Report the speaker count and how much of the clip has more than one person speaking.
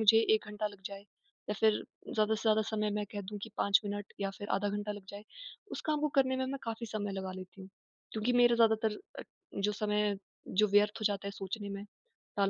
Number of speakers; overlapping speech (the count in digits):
1, no overlap